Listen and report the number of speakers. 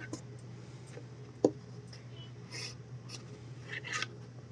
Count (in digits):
0